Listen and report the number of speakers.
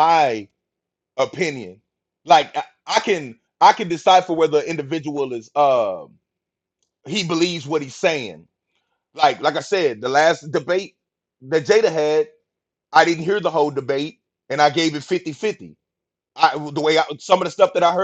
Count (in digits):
1